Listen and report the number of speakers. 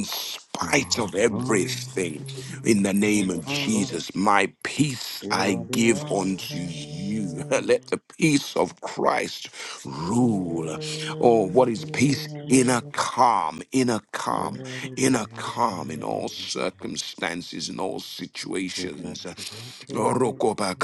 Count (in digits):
2